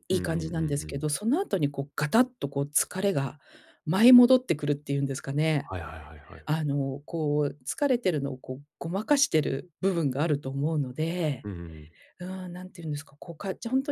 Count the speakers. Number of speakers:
2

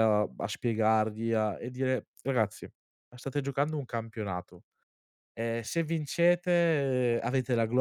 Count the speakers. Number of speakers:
1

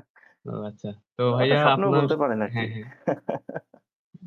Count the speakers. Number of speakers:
2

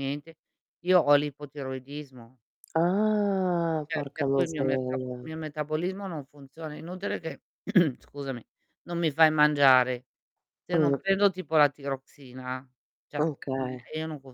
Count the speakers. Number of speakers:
2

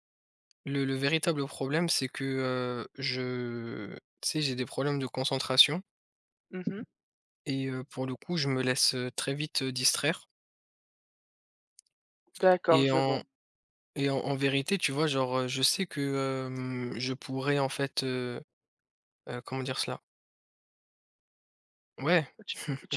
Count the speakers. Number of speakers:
2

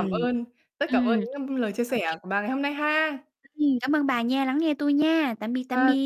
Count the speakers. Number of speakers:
2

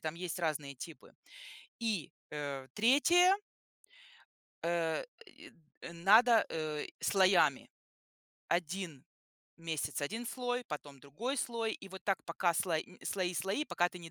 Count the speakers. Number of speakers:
1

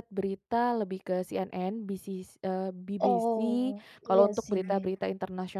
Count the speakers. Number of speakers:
2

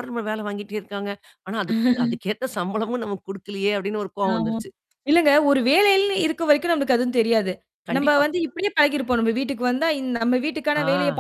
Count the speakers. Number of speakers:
2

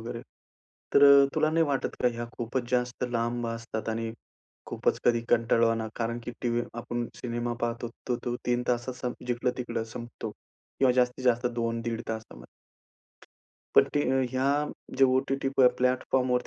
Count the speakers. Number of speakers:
1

